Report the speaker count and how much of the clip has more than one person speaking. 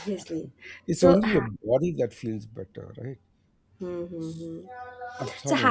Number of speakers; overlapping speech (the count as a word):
two, about 12%